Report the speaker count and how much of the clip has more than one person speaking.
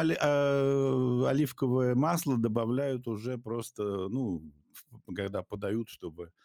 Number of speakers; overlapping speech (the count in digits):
1, no overlap